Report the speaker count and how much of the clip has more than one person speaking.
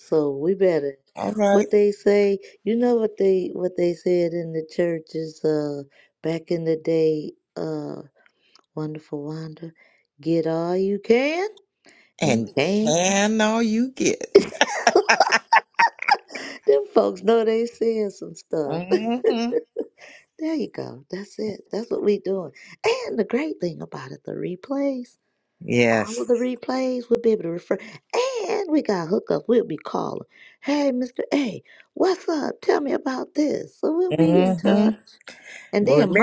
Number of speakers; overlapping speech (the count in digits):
2, about 7%